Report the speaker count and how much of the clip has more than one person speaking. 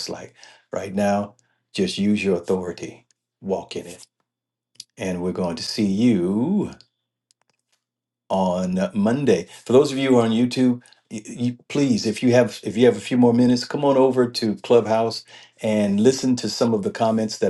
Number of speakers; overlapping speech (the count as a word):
one, no overlap